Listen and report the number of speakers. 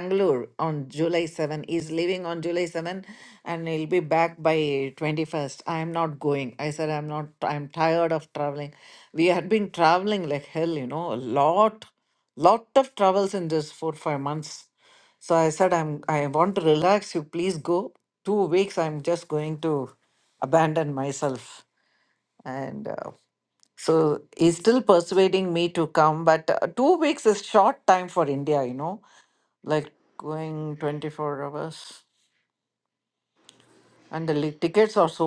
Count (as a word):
one